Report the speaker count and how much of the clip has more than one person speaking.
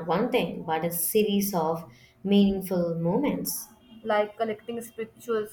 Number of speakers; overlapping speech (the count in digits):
2, no overlap